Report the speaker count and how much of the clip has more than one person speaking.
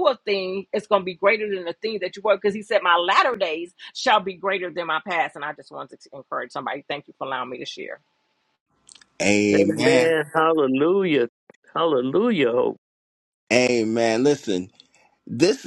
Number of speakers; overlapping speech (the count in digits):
3, about 4%